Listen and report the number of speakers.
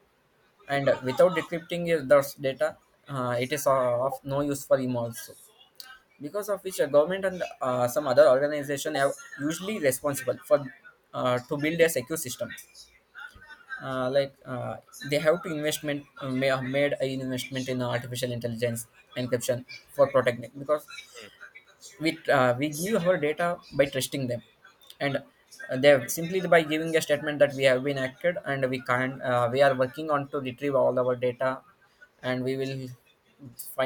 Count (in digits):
1